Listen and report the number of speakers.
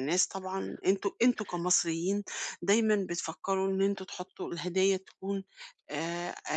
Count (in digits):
1